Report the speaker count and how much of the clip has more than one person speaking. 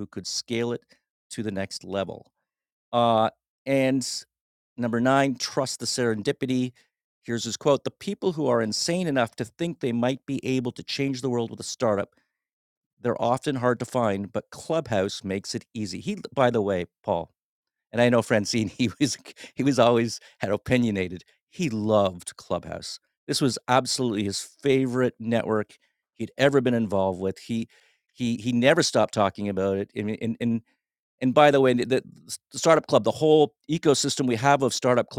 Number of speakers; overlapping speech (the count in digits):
1, no overlap